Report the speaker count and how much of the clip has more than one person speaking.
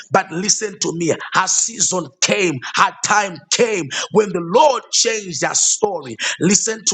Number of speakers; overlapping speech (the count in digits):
1, no overlap